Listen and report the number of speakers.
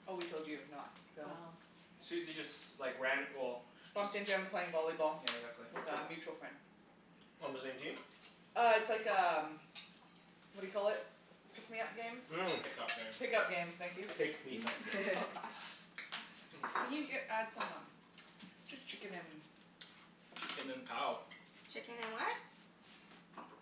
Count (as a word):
four